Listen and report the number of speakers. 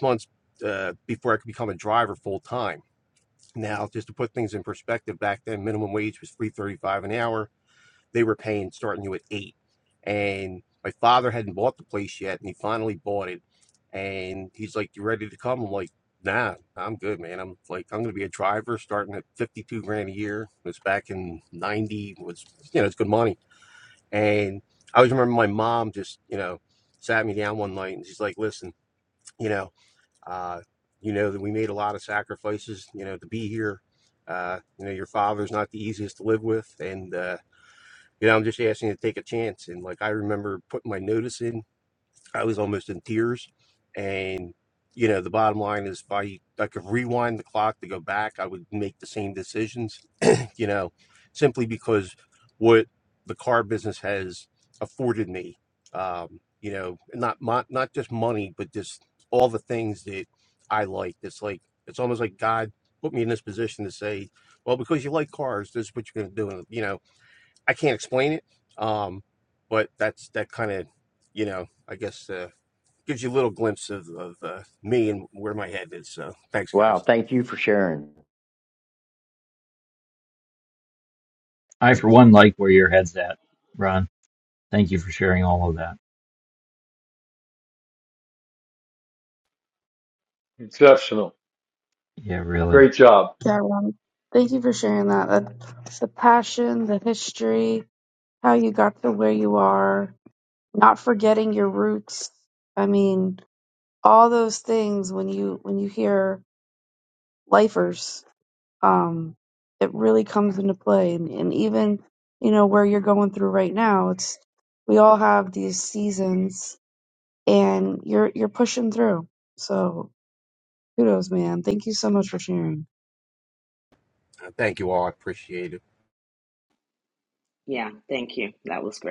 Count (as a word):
six